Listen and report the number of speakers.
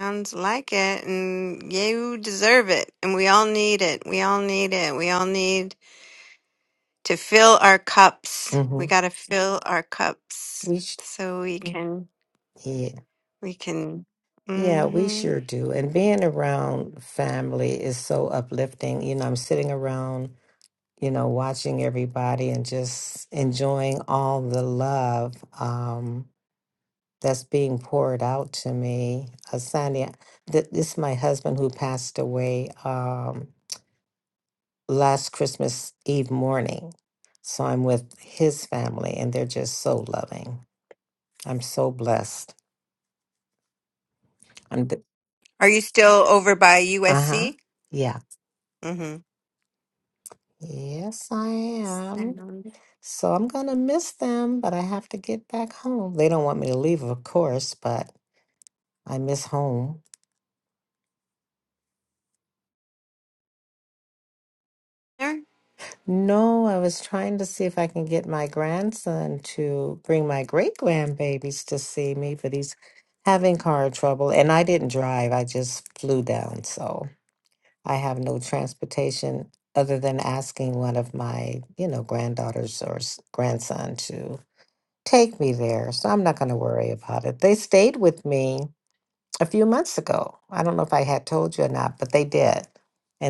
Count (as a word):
two